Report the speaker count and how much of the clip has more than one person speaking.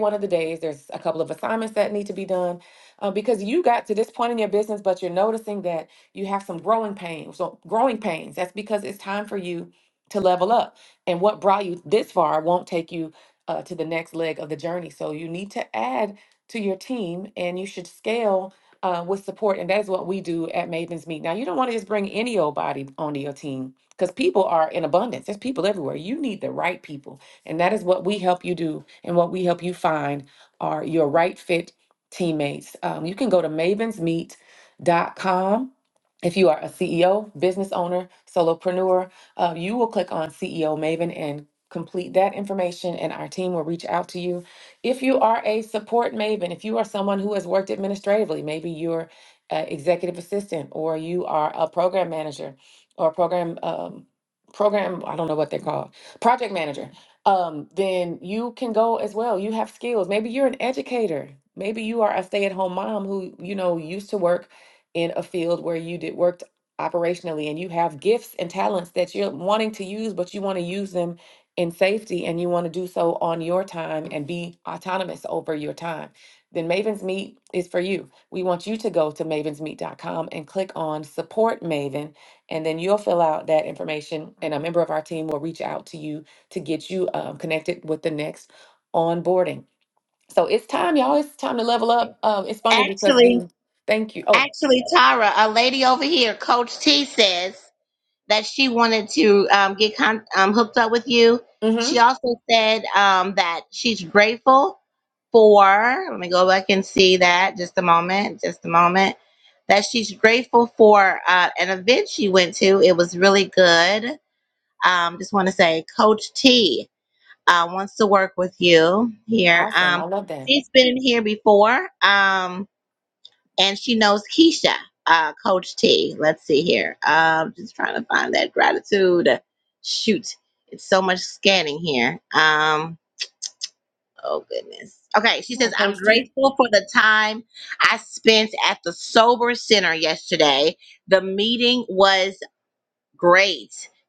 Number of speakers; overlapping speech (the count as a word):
two, about 2%